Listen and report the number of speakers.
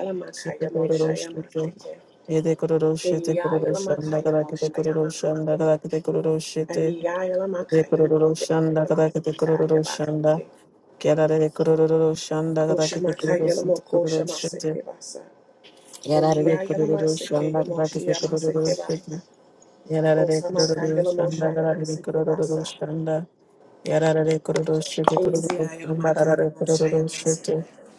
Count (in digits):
2